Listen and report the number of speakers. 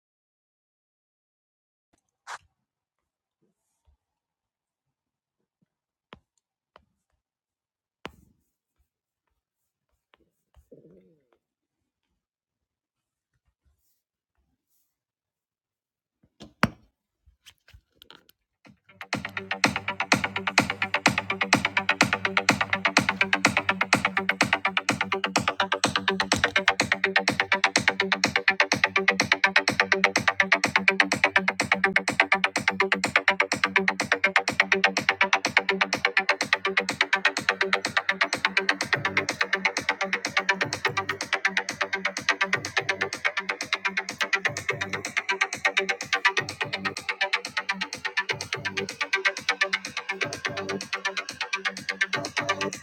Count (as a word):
zero